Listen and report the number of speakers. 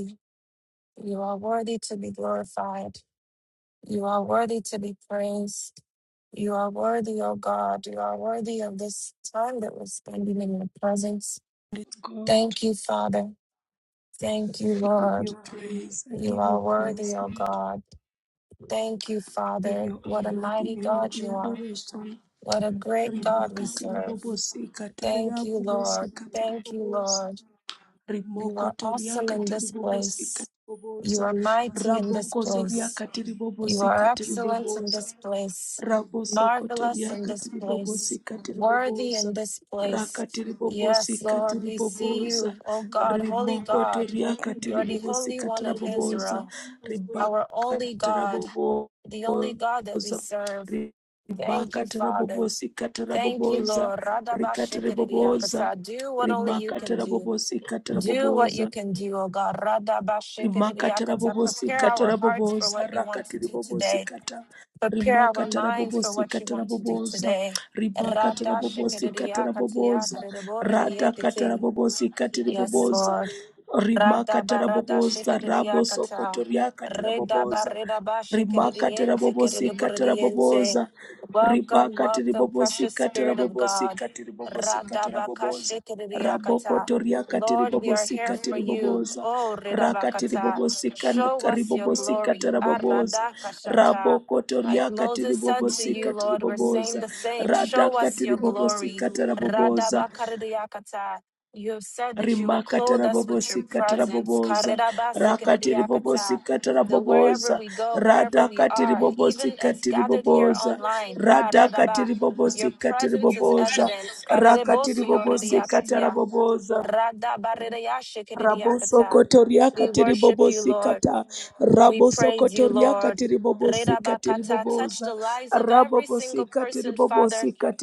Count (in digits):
2